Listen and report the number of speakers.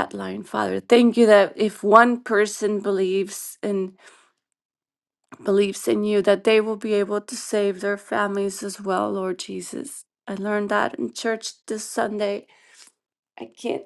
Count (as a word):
one